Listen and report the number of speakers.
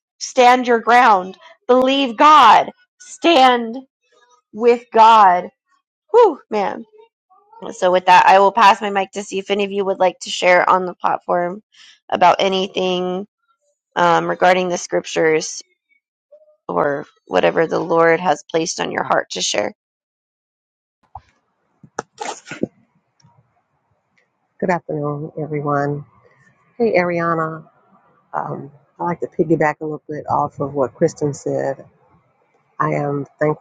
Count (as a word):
two